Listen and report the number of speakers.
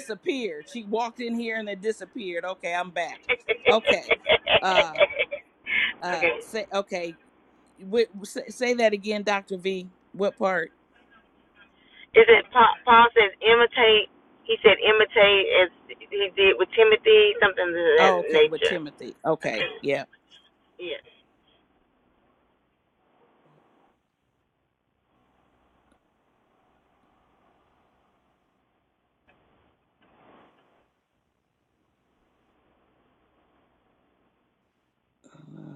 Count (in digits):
2